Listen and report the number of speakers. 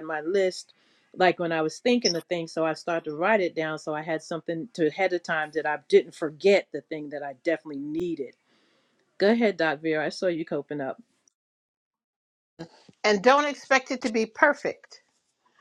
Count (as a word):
two